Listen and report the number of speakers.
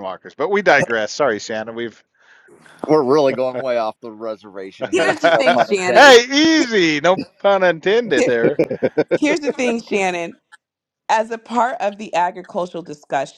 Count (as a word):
three